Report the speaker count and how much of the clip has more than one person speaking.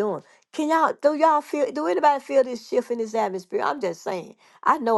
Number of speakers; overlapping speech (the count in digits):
1, no overlap